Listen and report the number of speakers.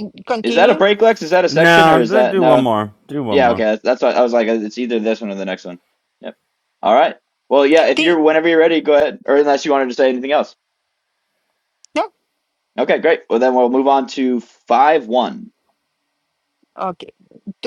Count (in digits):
3